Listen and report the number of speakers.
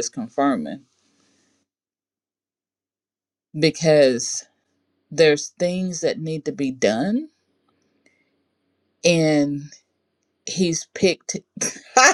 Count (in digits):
1